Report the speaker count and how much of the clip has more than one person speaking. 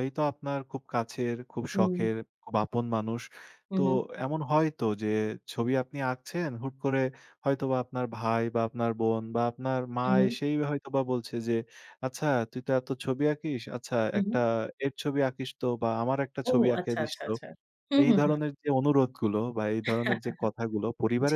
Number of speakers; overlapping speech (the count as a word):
two, about 11%